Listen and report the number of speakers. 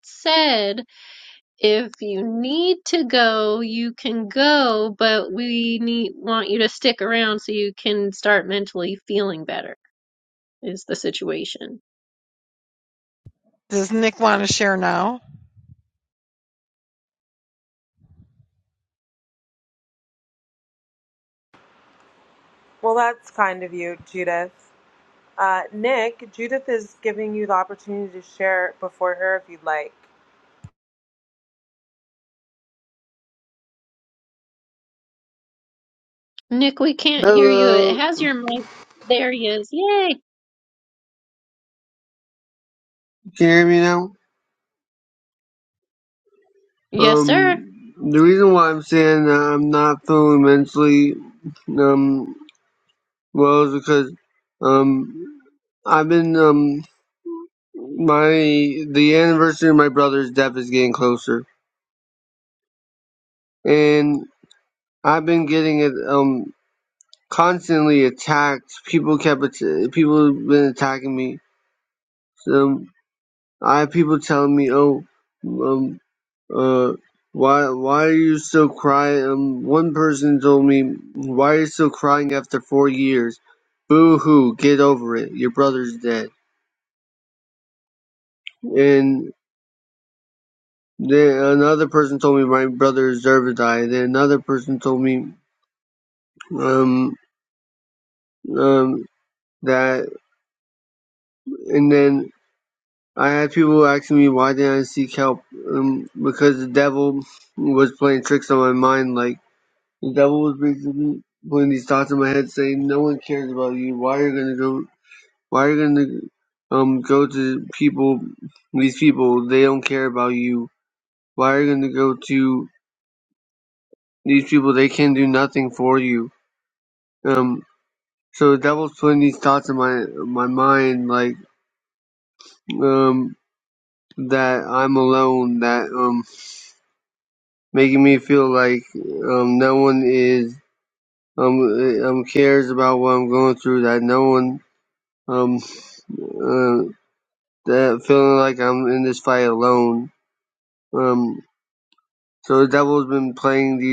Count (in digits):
4